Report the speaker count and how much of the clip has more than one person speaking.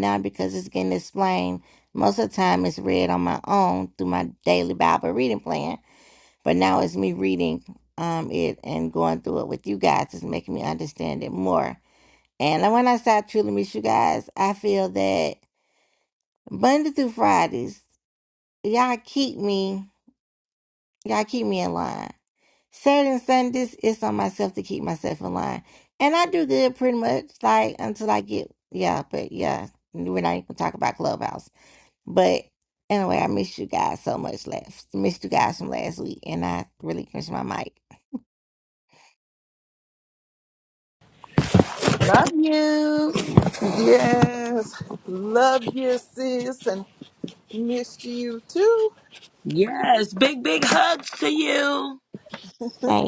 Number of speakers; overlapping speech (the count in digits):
4, no overlap